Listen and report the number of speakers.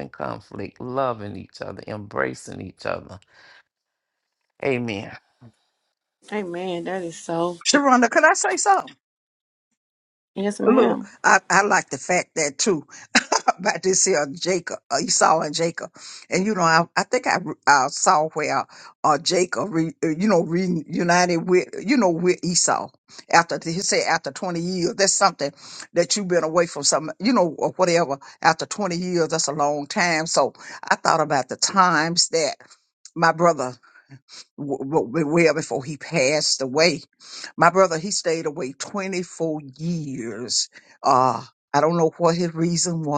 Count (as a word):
three